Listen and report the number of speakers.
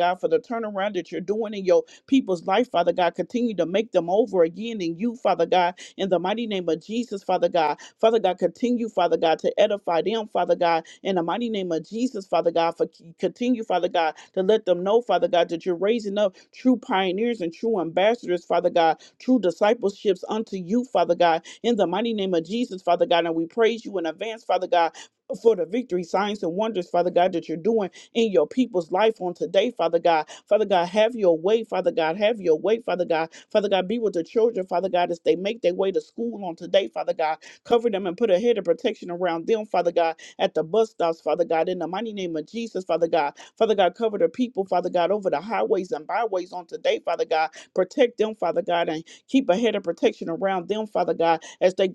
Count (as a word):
one